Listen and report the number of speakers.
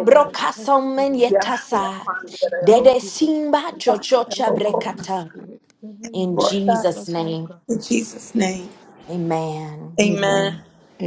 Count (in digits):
3